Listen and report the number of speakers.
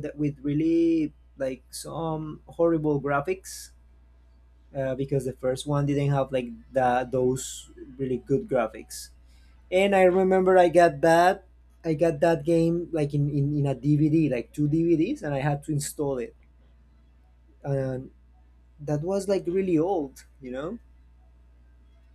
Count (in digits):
1